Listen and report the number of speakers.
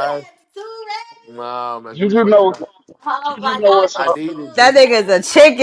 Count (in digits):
3